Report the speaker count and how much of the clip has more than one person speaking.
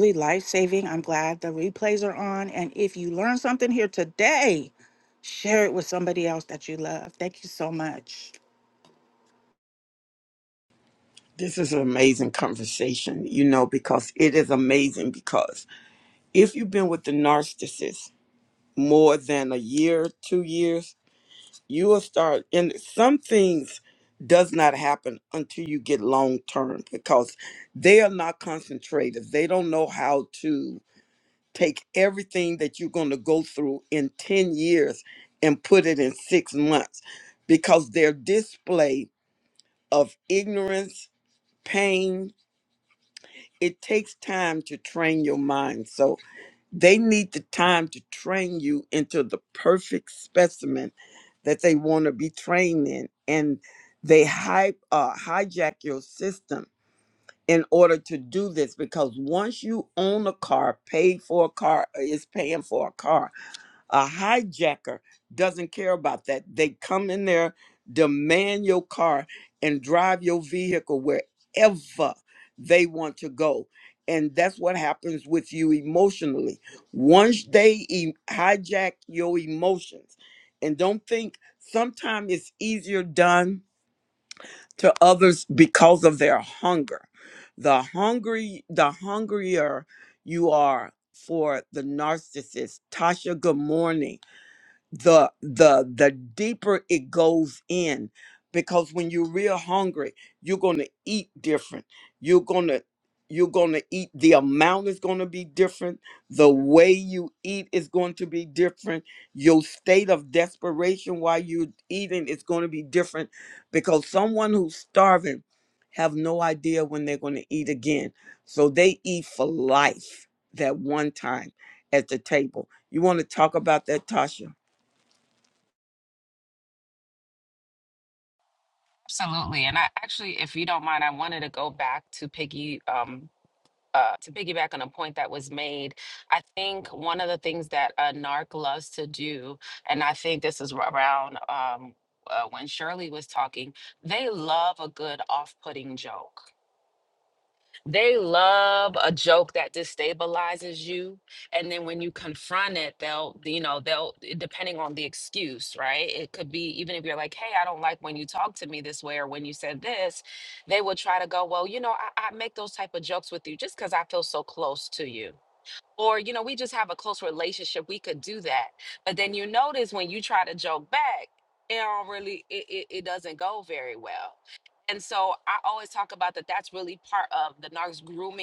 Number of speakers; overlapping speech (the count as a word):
three, no overlap